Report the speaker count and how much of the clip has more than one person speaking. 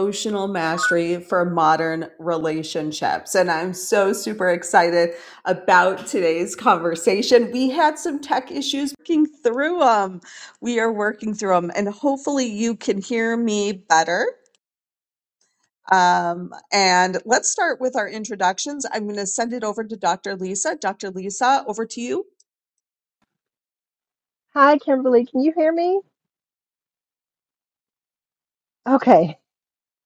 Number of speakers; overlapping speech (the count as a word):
two, no overlap